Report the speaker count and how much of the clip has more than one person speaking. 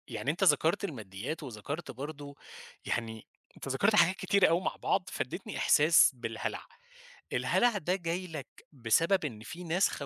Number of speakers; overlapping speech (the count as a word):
one, no overlap